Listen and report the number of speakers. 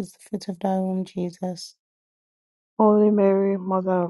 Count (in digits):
2